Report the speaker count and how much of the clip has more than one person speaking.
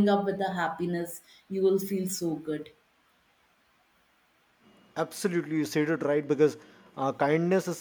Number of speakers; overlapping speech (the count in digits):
2, no overlap